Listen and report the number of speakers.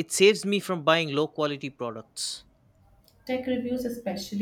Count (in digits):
2